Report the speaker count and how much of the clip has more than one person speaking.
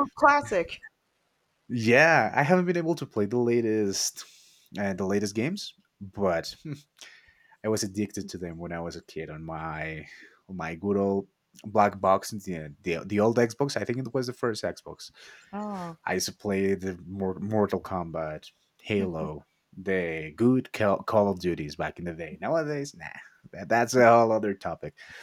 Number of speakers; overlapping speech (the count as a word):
two, no overlap